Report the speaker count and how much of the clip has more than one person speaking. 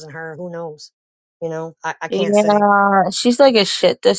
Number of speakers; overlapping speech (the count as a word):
two, about 12%